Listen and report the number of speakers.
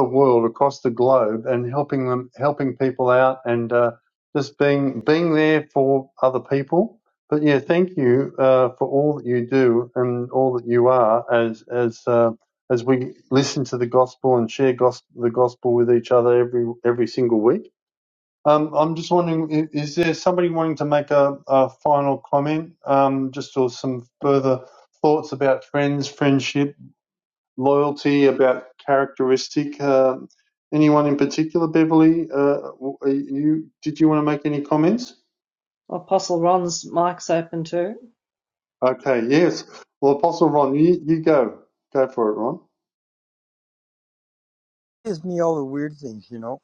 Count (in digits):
3